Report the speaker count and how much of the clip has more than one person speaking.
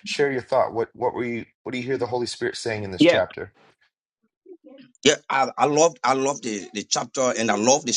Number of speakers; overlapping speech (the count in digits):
2, about 3%